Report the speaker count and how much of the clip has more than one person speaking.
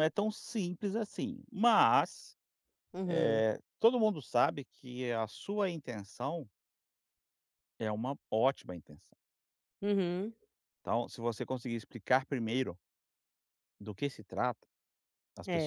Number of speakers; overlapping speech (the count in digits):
2, about 3%